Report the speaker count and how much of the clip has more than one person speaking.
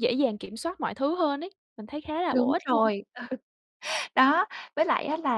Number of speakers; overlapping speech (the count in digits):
2, about 11%